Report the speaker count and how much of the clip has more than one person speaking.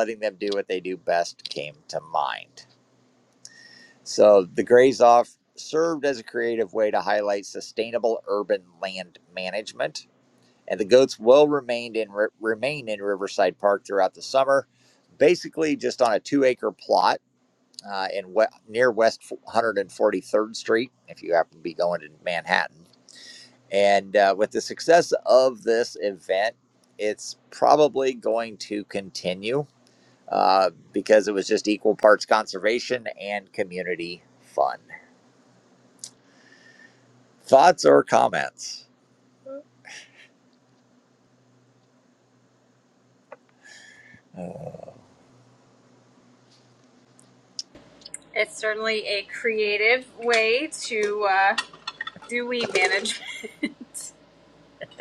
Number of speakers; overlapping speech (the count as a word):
two, no overlap